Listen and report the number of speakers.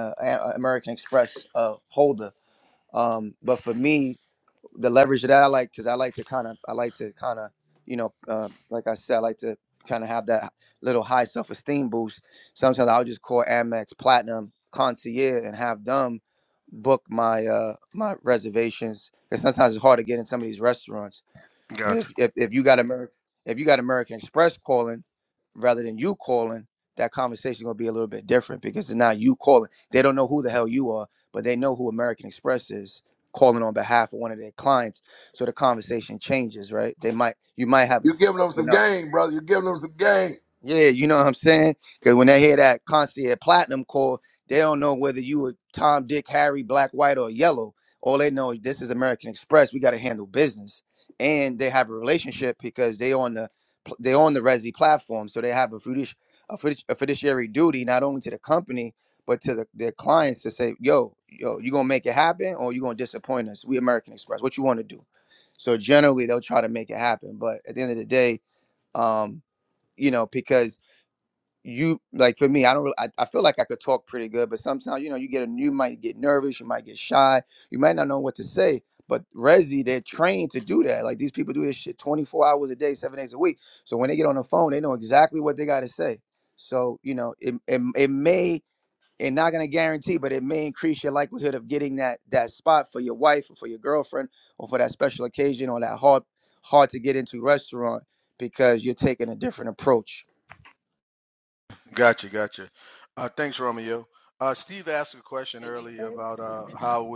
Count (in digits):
3